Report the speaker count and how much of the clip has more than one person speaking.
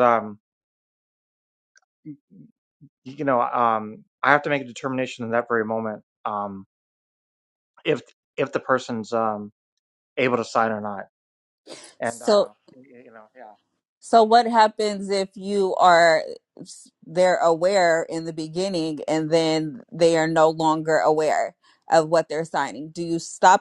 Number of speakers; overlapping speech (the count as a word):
two, about 1%